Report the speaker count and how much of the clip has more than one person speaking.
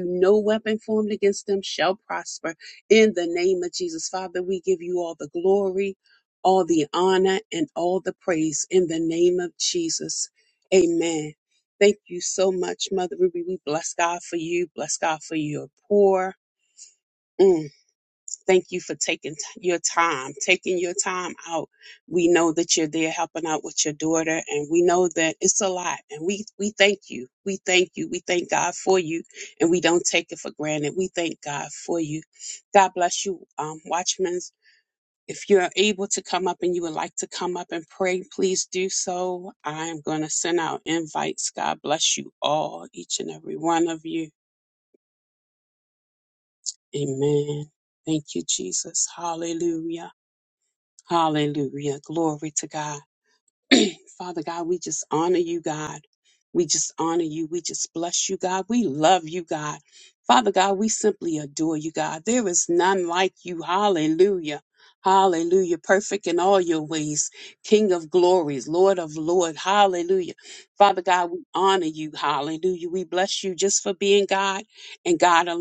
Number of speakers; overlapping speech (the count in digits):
1, no overlap